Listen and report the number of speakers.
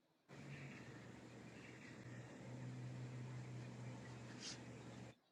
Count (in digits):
0